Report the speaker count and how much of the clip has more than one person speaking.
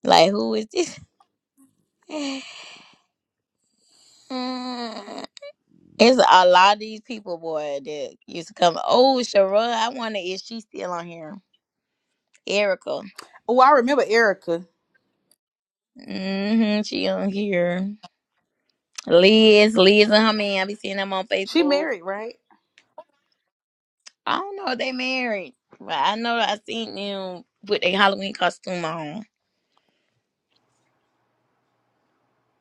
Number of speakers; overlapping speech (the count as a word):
two, about 1%